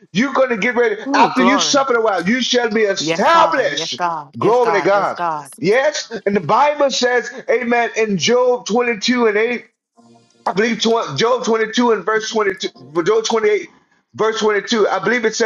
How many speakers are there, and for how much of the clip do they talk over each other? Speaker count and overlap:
2, about 16%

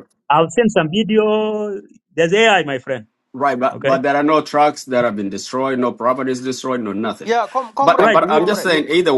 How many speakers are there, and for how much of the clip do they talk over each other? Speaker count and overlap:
3, about 14%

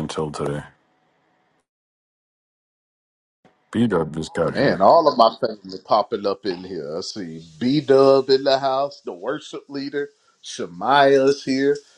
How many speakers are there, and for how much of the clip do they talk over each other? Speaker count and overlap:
2, about 3%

